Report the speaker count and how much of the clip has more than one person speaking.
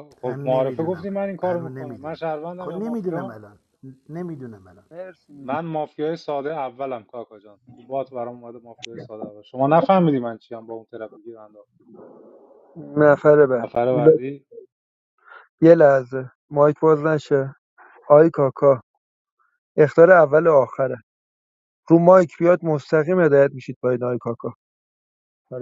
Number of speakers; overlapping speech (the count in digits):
3, about 11%